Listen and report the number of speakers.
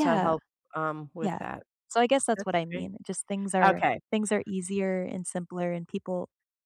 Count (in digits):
2